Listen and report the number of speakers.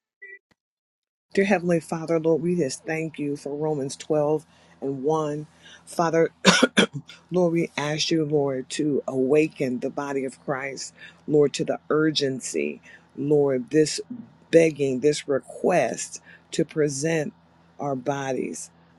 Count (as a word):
one